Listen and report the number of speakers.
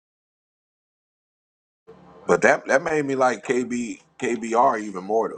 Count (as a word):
one